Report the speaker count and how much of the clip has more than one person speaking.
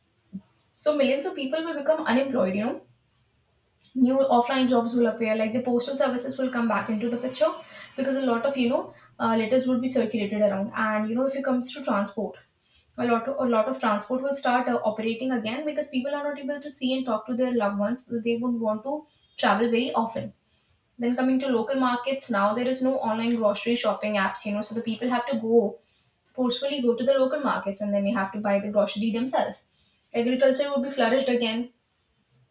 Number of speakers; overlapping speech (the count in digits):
1, no overlap